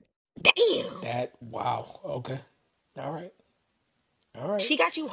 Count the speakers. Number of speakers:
2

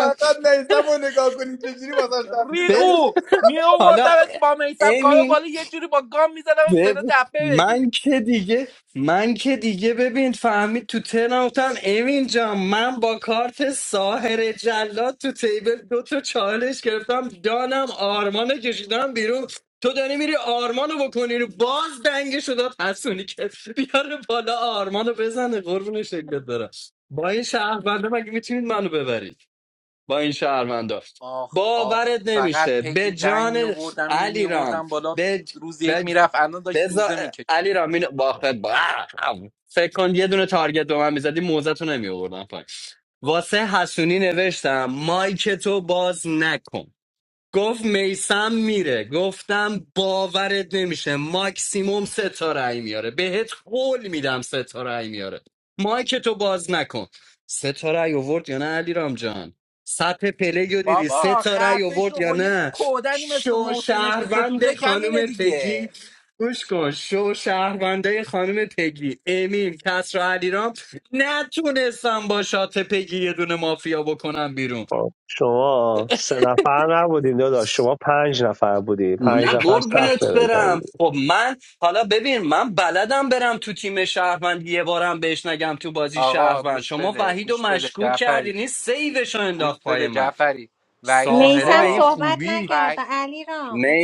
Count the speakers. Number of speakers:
5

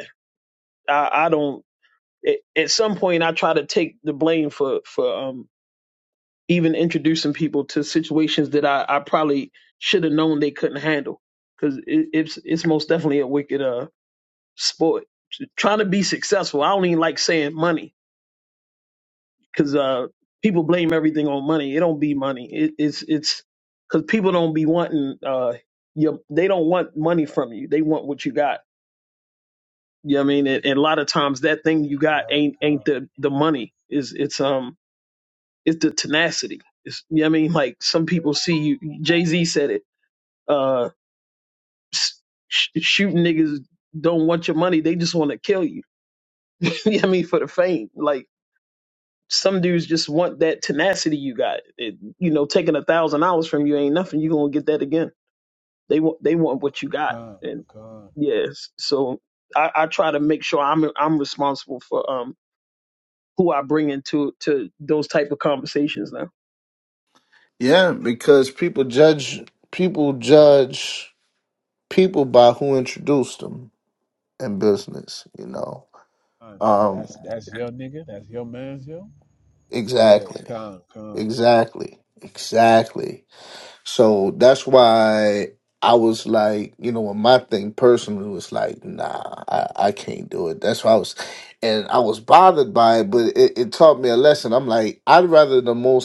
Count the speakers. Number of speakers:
3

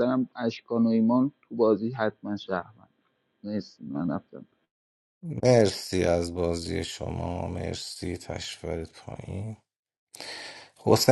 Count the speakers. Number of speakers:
2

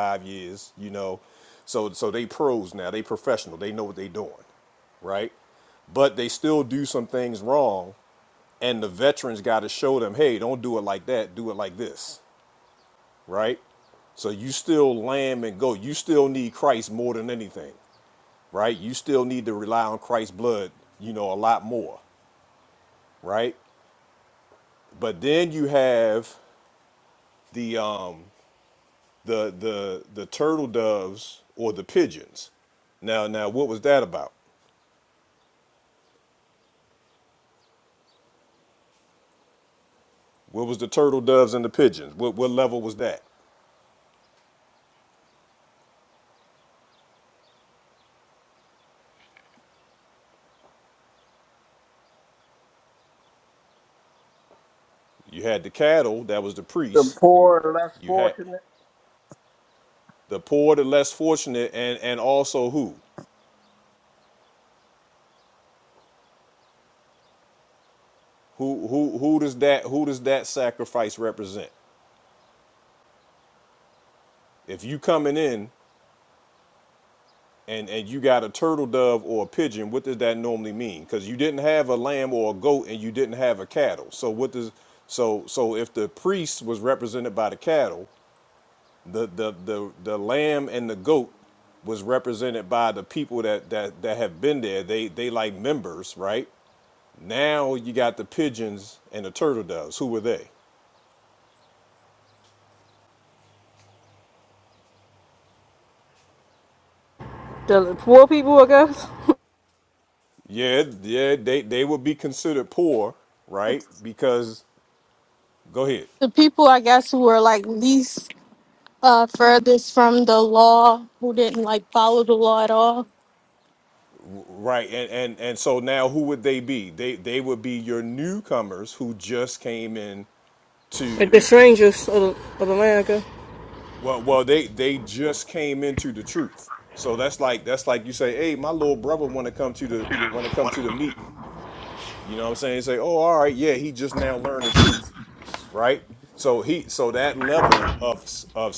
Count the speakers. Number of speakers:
4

